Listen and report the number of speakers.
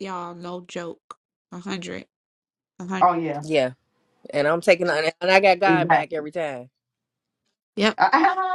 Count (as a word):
three